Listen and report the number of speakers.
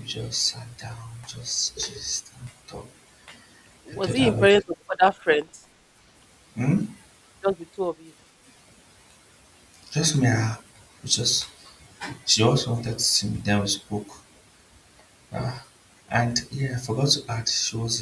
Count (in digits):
2